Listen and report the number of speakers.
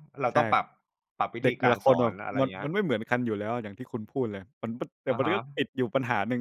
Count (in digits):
2